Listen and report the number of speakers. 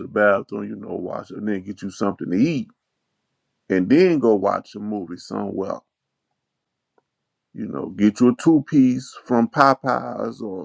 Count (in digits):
1